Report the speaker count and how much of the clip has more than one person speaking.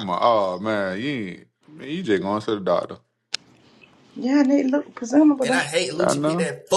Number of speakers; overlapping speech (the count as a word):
three, about 11%